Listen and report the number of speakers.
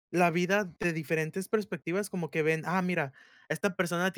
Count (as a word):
one